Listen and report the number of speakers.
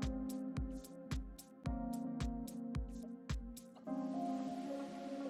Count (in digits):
0